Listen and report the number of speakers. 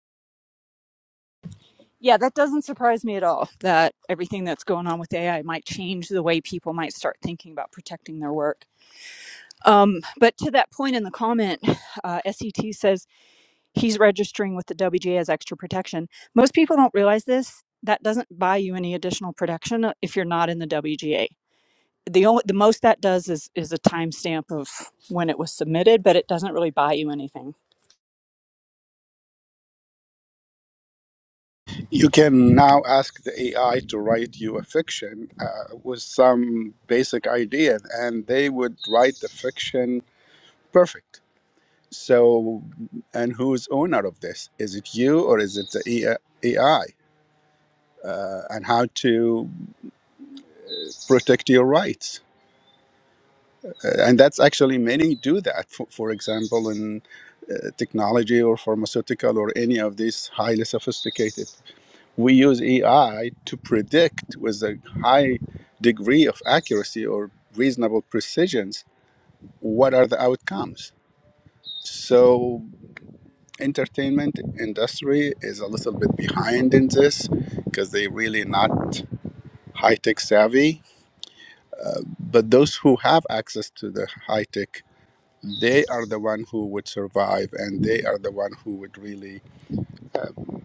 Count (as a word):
two